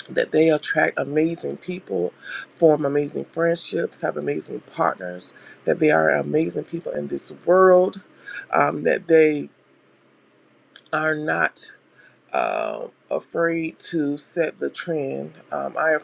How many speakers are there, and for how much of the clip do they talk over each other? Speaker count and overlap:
1, no overlap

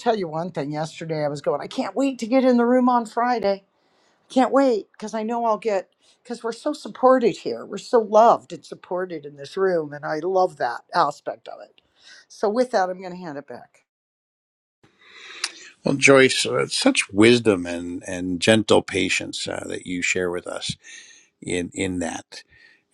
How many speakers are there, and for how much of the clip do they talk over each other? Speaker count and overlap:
2, no overlap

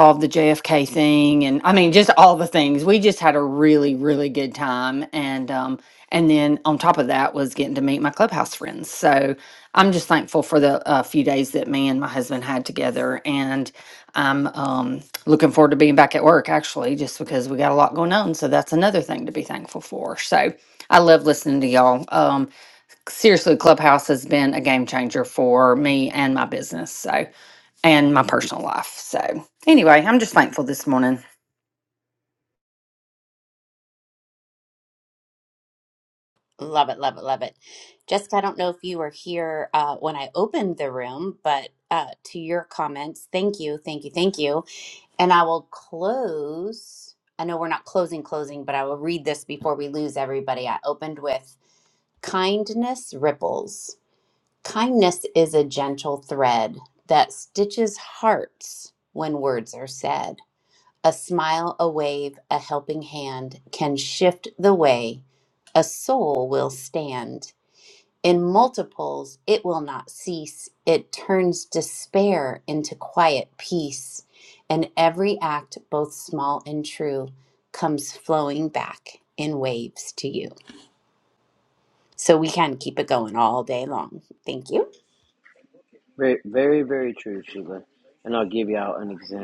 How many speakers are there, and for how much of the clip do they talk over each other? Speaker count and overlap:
3, no overlap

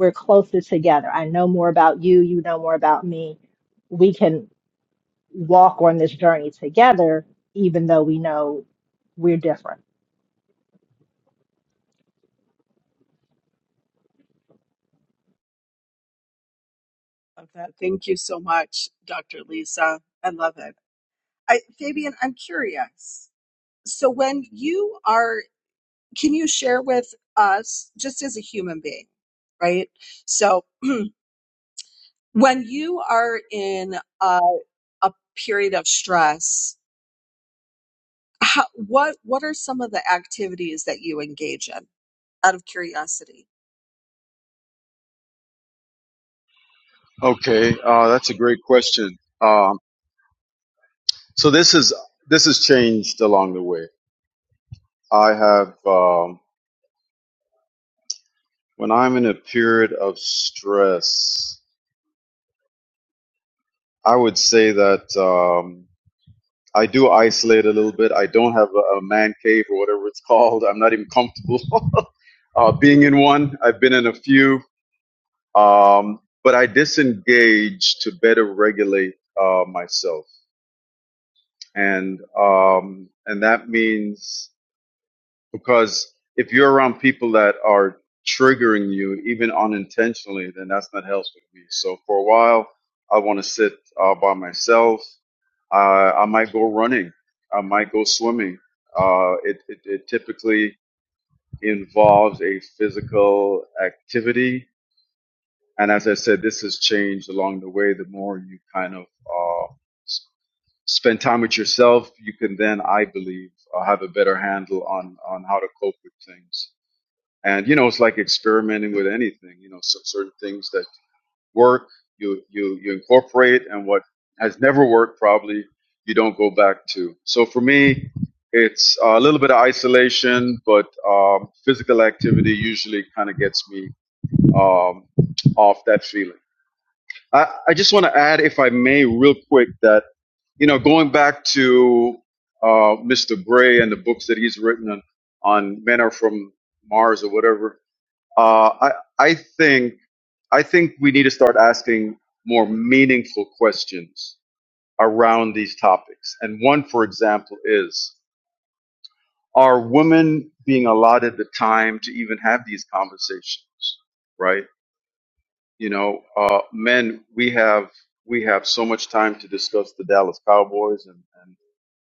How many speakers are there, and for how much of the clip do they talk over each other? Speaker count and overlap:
3, no overlap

